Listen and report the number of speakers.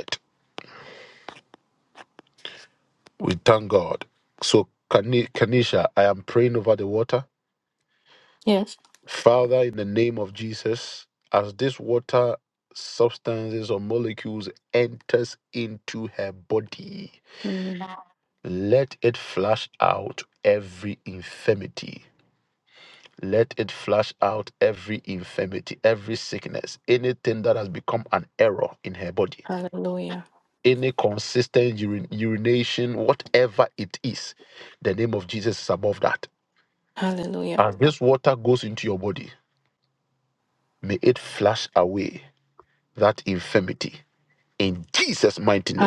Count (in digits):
2